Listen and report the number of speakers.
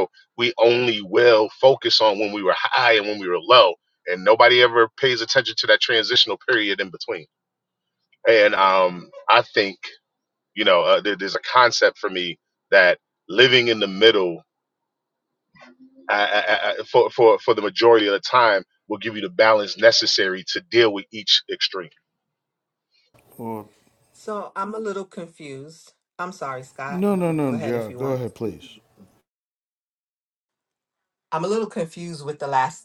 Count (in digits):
3